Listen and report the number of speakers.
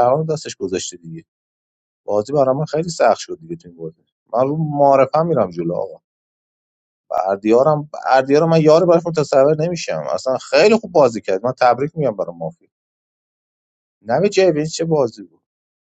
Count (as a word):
one